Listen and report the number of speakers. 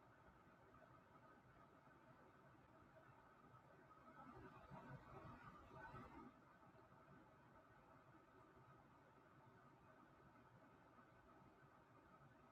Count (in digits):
0